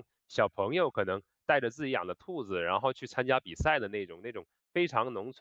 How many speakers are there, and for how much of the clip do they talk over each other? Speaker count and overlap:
1, no overlap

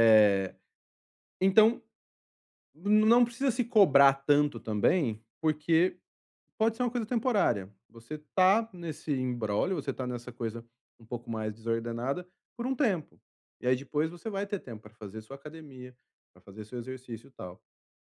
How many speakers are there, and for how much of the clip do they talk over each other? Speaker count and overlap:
1, no overlap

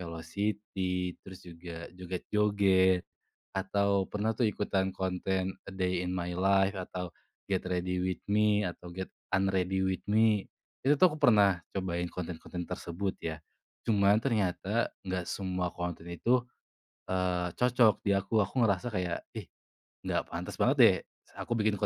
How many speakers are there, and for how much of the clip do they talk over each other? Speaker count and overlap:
1, no overlap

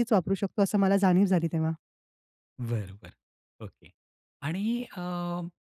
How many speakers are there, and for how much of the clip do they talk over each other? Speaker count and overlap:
2, no overlap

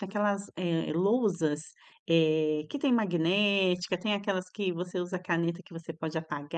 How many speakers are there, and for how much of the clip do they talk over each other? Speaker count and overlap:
1, no overlap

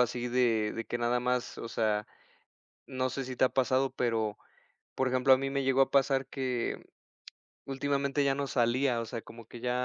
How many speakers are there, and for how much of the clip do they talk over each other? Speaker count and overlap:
1, no overlap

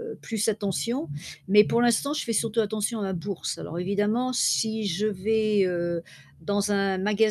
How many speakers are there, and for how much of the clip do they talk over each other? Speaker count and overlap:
1, no overlap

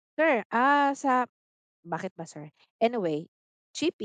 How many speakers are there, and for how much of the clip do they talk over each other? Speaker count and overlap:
1, no overlap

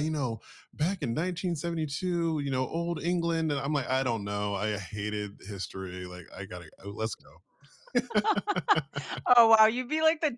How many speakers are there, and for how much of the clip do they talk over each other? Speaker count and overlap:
2, no overlap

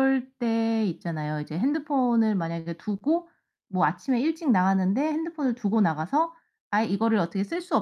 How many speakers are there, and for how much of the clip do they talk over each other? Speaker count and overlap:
1, no overlap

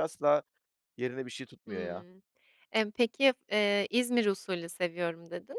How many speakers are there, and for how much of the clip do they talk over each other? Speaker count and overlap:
2, about 6%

